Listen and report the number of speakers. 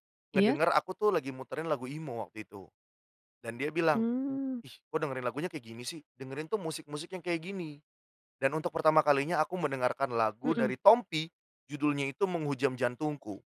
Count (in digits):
2